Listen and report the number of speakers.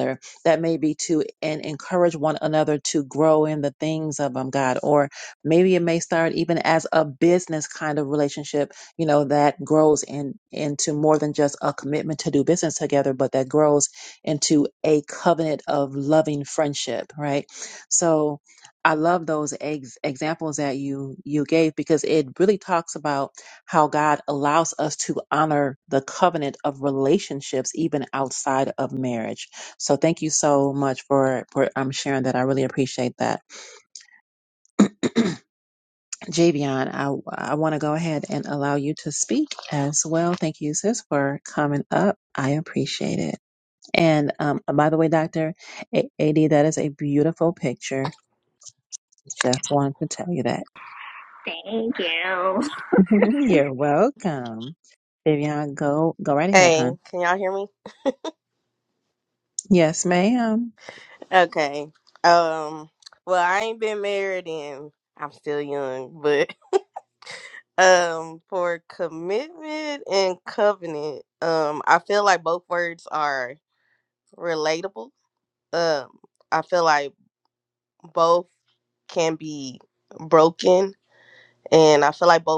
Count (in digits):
3